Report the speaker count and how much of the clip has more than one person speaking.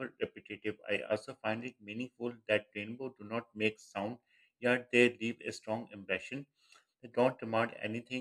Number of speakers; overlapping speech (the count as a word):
one, no overlap